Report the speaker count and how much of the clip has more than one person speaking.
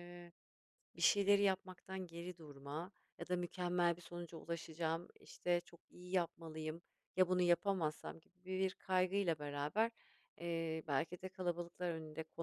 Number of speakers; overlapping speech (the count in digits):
1, no overlap